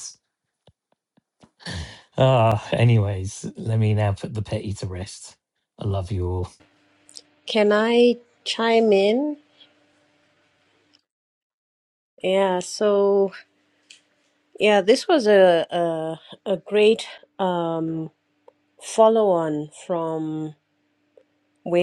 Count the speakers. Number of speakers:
2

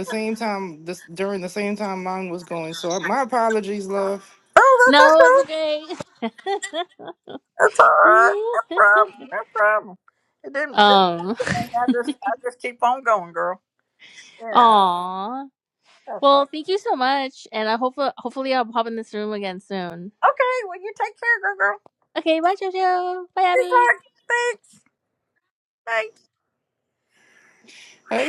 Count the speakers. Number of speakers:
3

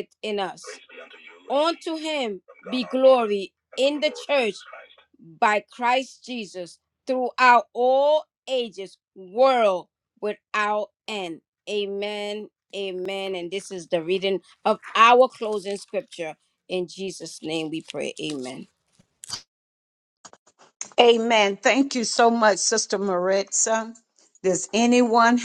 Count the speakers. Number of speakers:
2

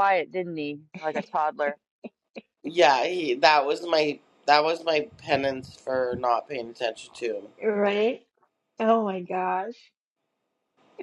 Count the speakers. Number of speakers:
3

